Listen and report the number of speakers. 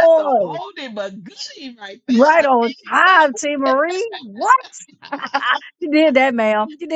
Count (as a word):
two